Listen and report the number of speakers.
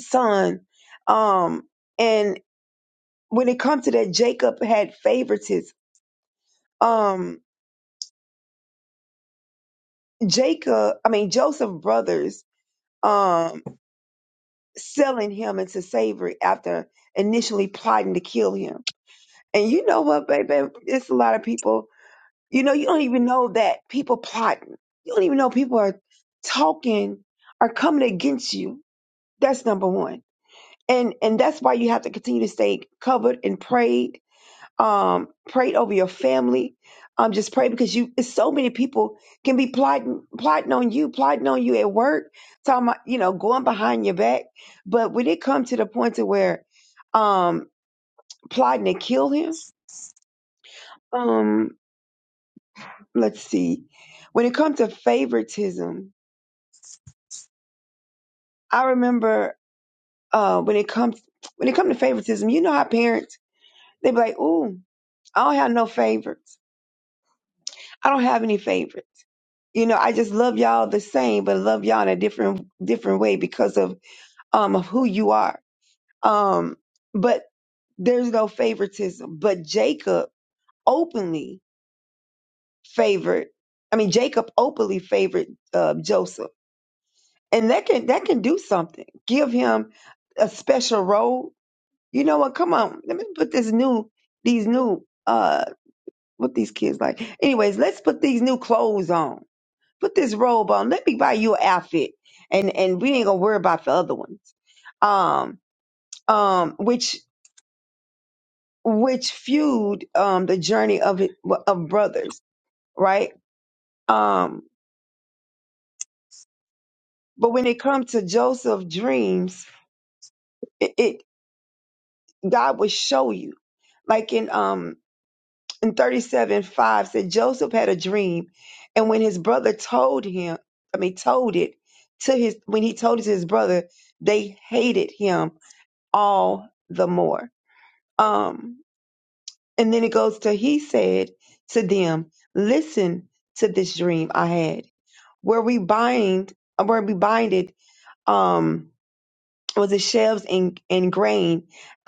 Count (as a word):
one